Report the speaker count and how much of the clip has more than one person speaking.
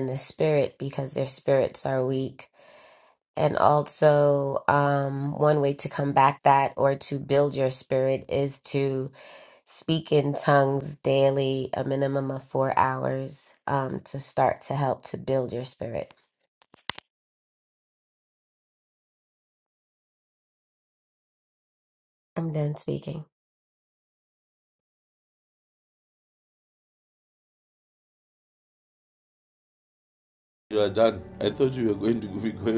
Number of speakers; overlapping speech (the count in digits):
2, no overlap